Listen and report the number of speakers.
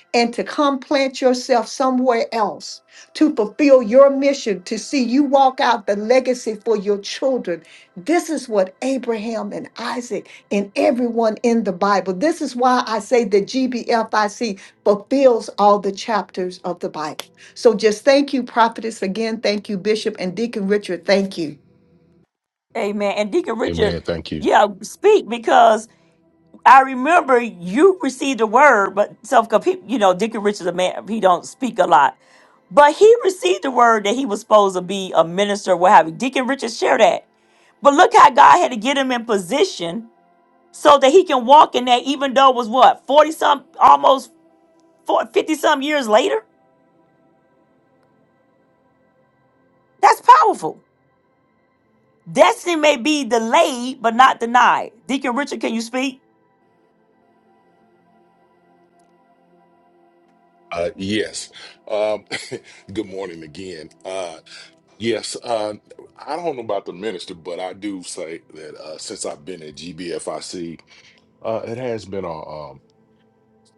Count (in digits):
3